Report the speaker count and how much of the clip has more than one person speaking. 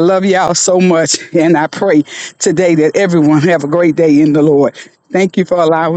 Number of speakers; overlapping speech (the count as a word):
one, no overlap